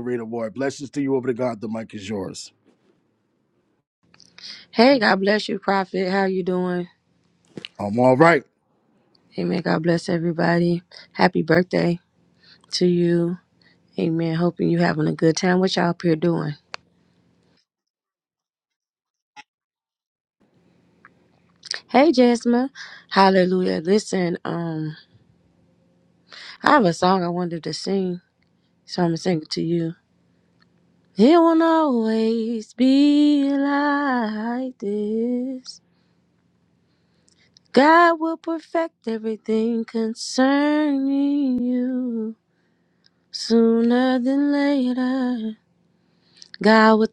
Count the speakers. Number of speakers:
2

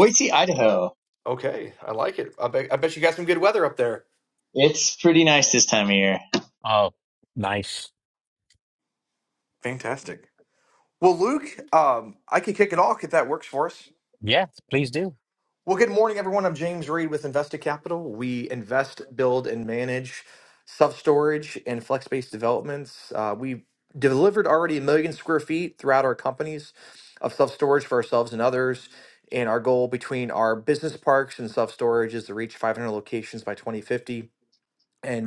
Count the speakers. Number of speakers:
3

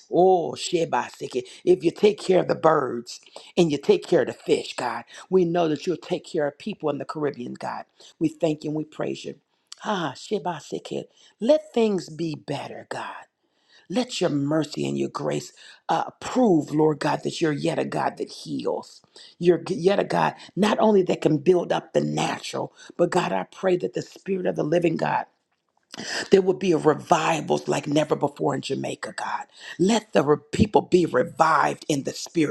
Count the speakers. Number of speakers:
1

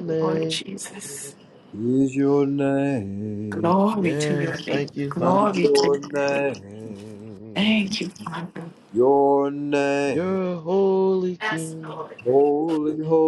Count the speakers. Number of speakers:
3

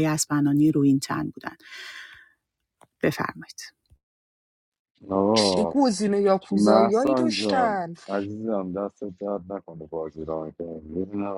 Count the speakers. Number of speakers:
3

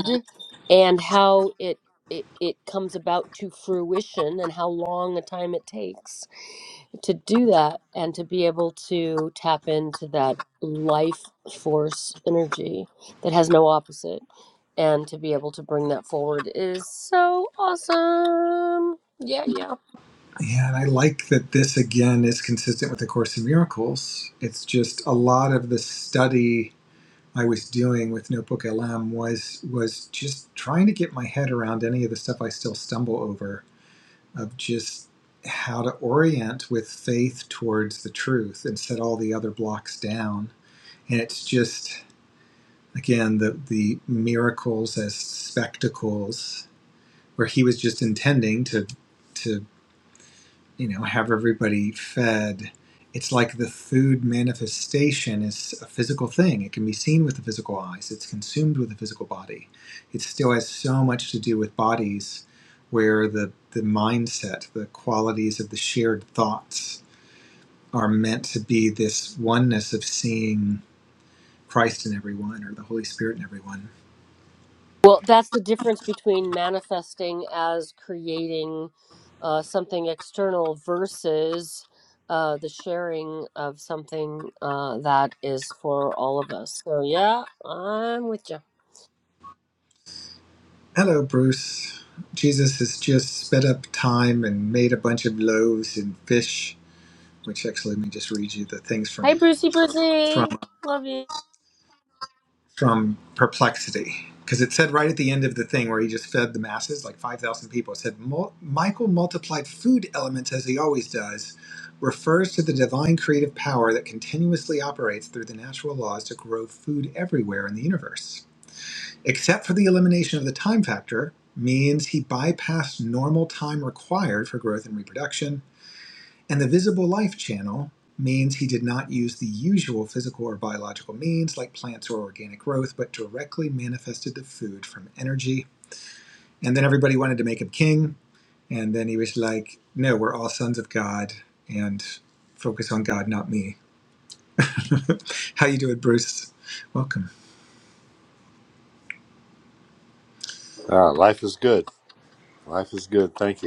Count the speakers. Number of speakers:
3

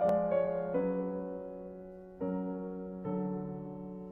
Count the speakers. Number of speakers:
0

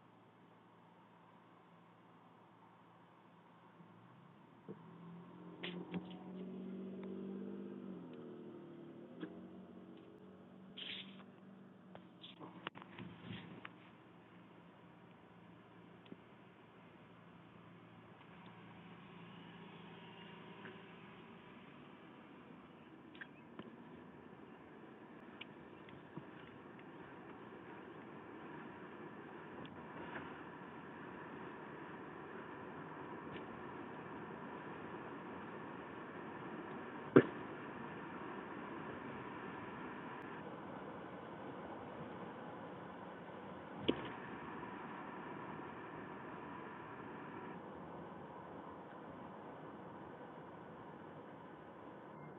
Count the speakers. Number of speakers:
0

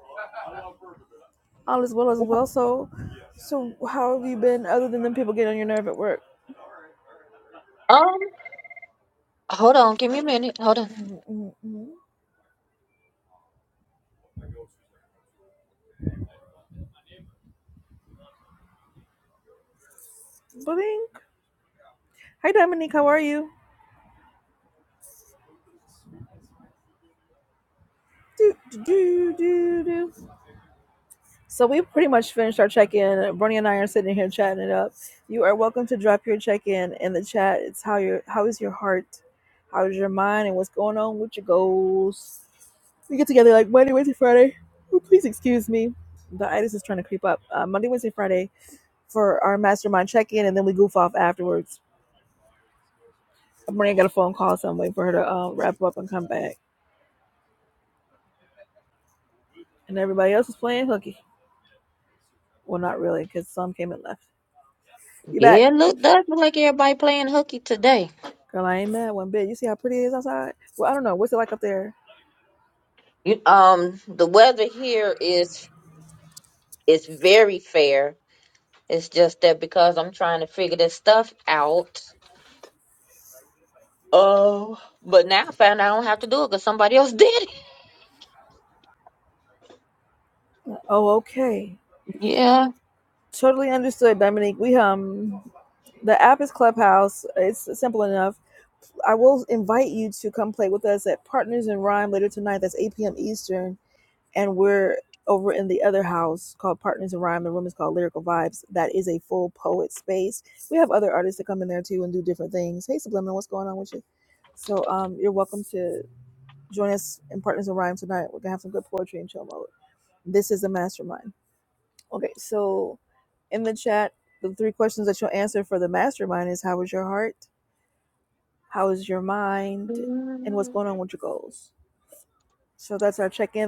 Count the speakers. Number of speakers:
2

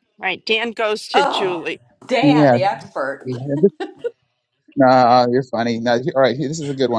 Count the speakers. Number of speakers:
3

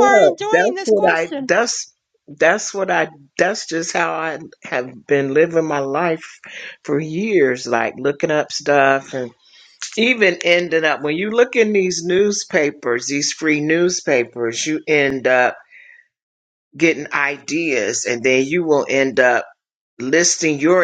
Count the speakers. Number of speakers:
2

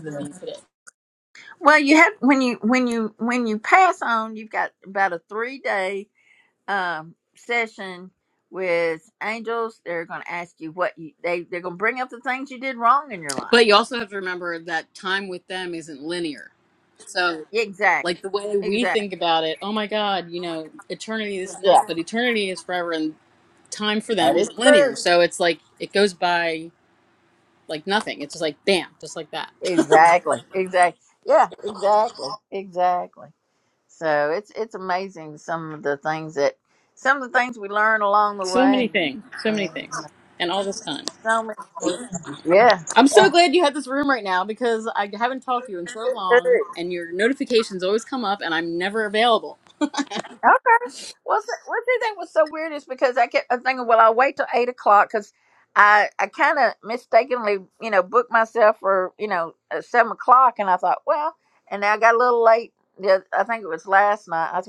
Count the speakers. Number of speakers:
2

